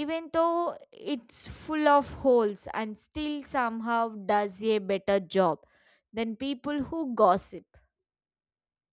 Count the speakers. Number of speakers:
one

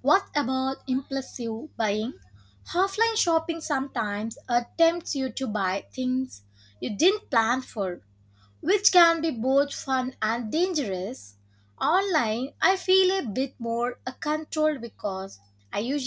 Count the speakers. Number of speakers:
one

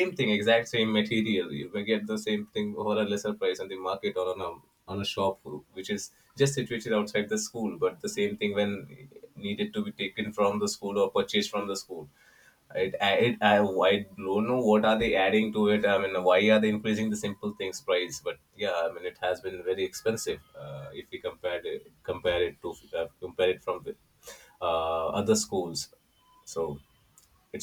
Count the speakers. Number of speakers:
one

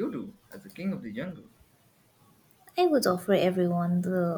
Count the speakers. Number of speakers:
two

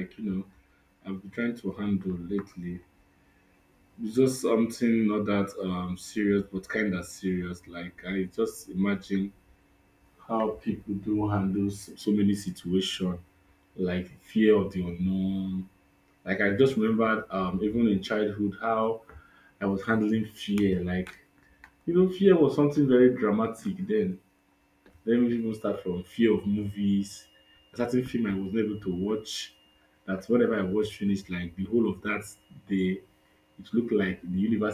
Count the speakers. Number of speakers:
one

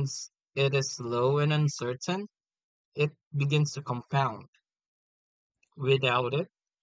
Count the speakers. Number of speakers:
one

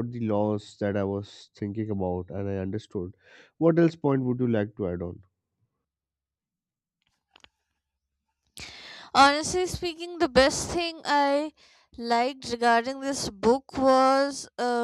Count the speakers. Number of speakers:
two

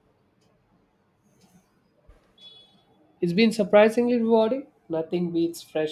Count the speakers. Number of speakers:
one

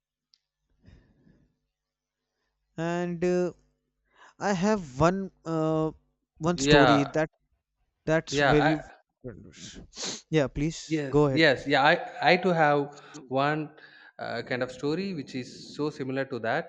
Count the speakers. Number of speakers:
two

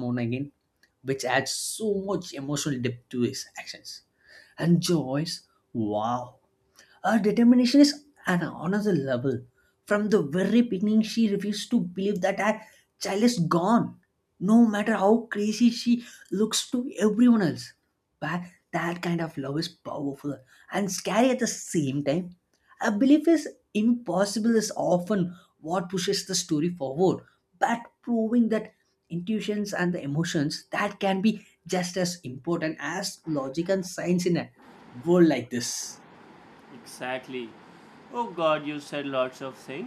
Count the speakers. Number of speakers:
two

